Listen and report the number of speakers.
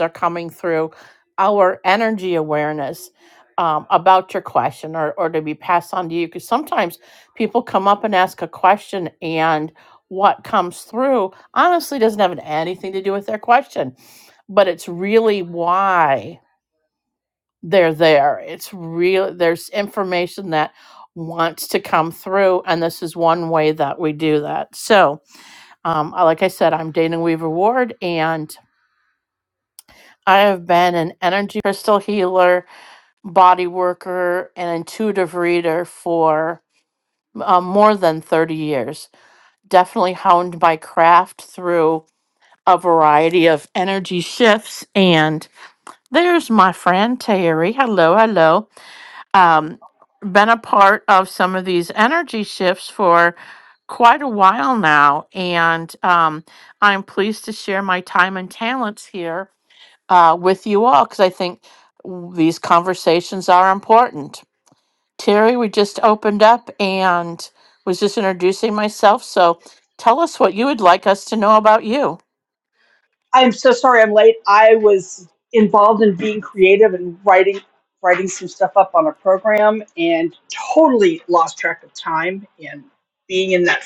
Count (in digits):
2